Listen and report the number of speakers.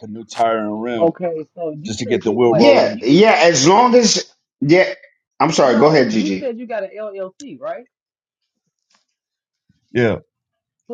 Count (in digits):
3